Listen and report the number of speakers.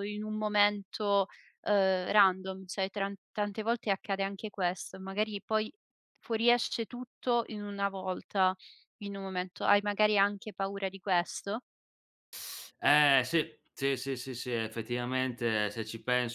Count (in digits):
2